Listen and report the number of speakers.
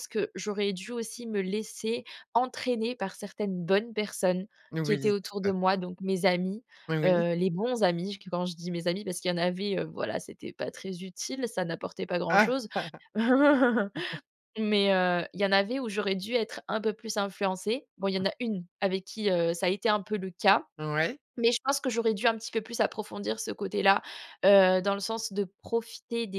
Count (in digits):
2